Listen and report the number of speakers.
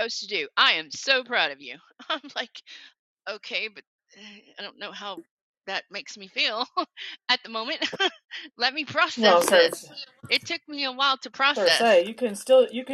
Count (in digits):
2